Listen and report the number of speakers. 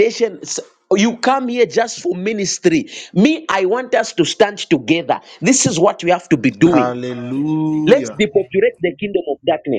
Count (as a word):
two